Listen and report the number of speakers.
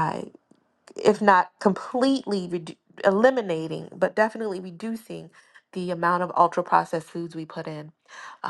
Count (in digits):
1